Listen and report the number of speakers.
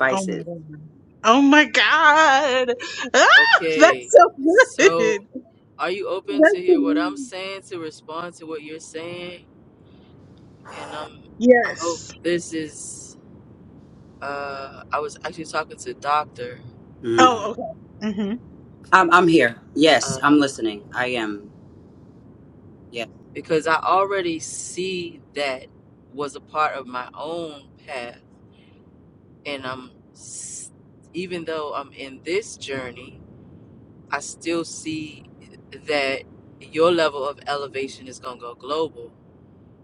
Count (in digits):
3